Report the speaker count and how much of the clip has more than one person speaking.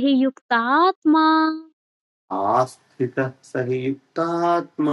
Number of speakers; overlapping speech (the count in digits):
2, no overlap